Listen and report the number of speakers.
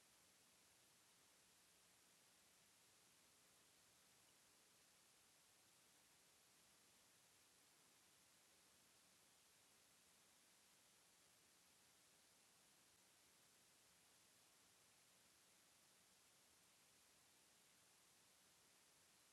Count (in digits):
0